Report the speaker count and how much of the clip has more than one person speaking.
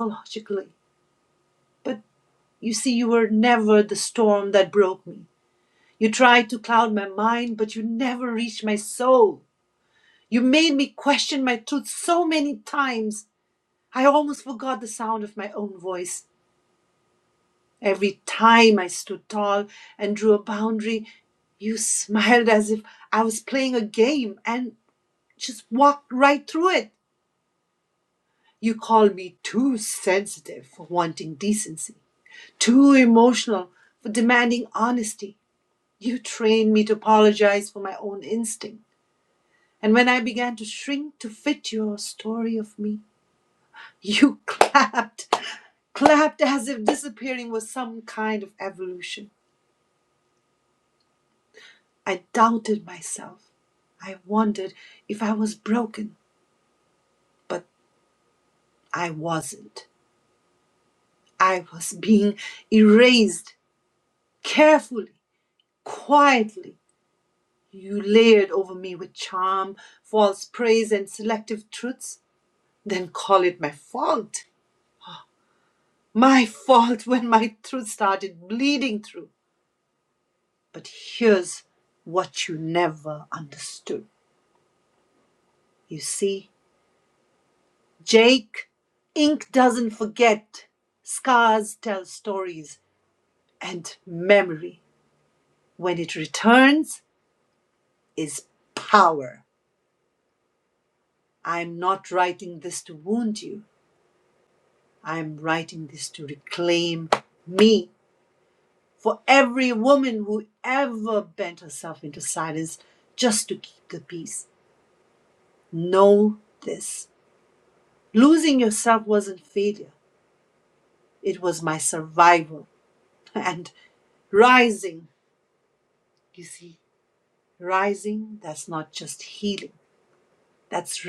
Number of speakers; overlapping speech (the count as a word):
one, no overlap